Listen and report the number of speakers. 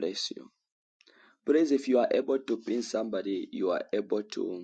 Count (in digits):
1